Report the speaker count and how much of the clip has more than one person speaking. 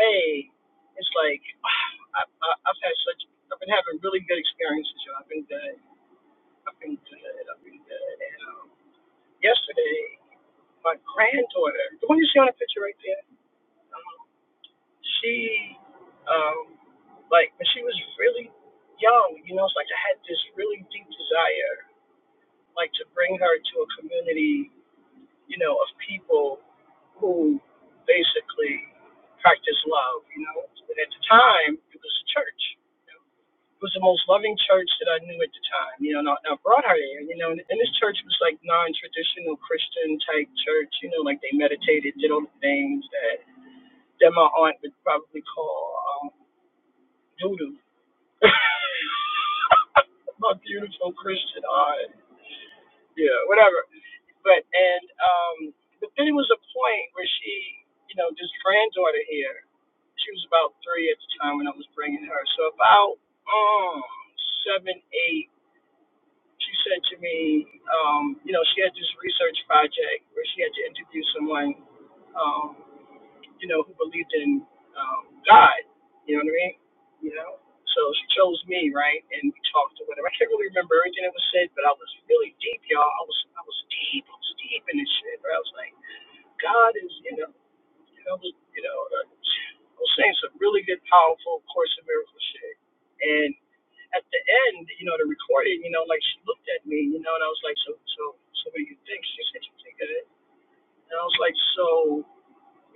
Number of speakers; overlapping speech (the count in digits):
1, no overlap